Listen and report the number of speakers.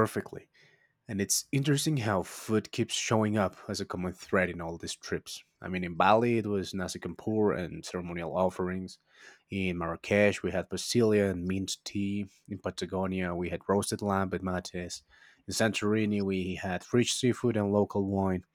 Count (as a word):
one